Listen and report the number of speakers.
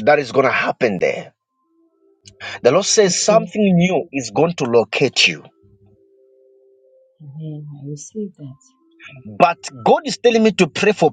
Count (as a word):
two